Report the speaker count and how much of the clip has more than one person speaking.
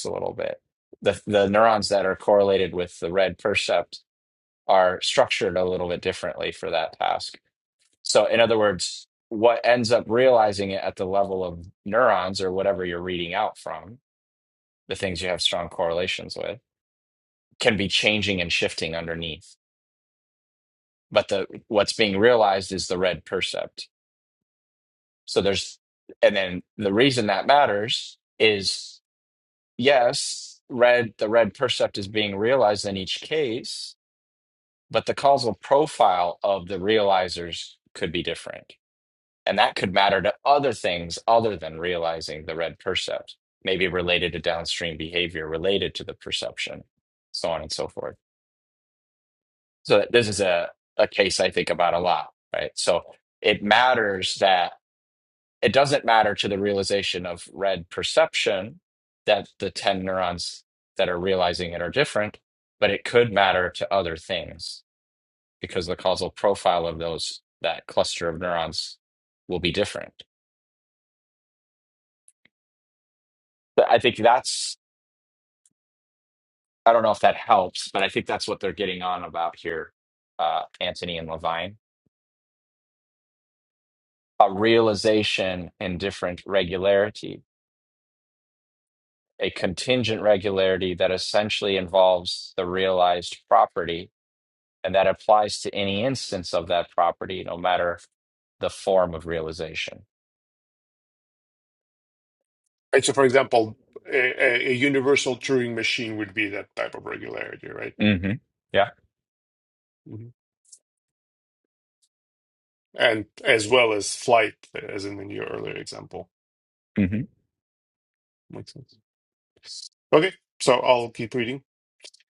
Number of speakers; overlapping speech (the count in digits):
2, no overlap